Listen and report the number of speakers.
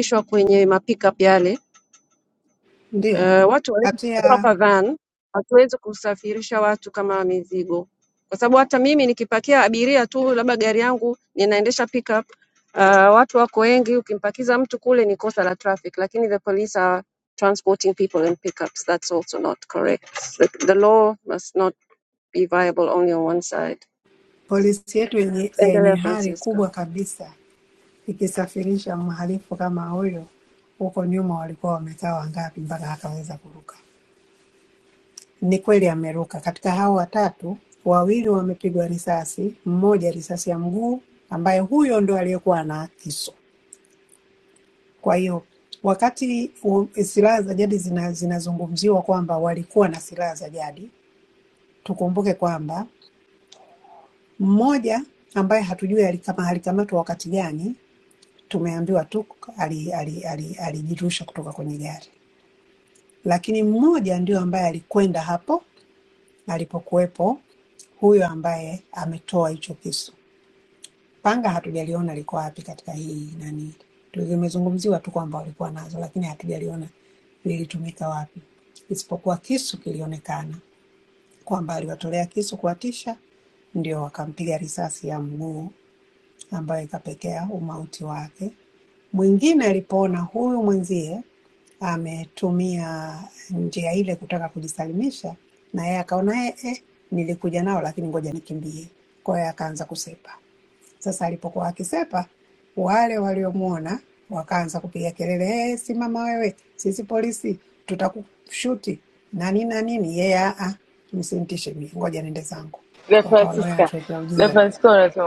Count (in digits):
3